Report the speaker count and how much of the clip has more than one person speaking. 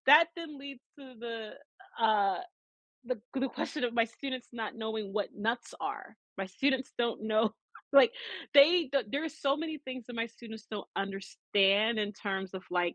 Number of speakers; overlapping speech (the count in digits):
1, no overlap